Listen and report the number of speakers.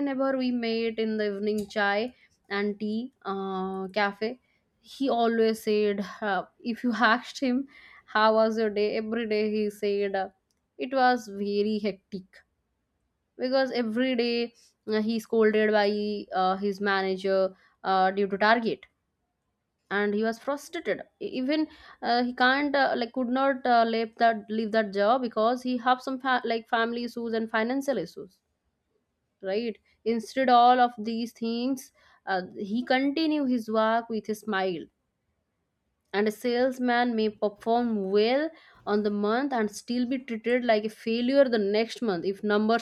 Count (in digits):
1